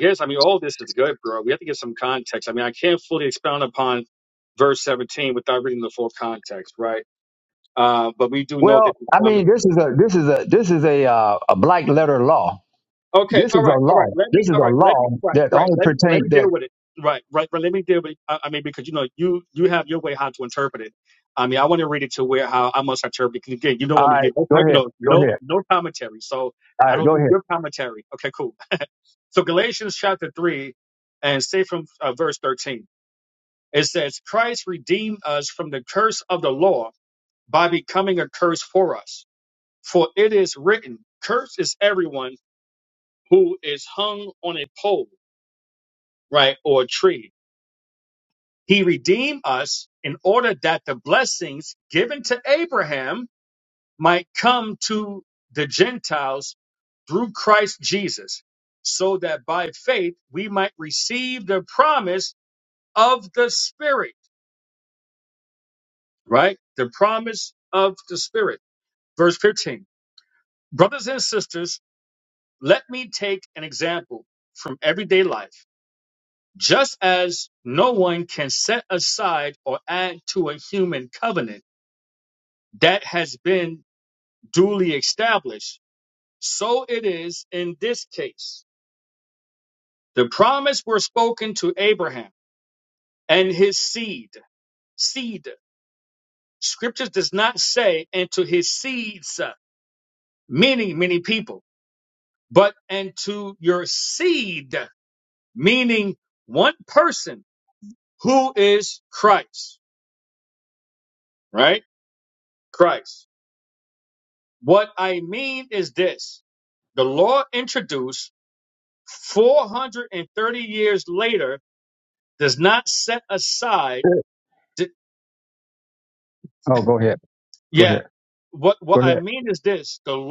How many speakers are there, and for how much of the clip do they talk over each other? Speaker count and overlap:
2, about 5%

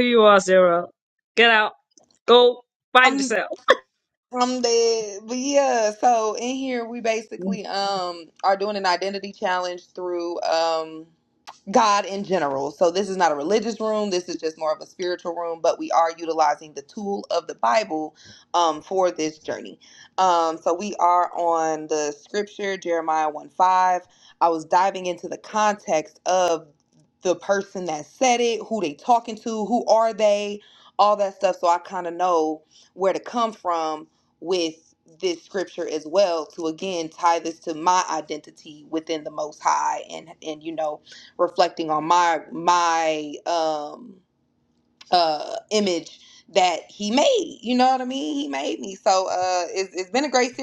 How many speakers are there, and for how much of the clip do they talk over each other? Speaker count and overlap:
2, no overlap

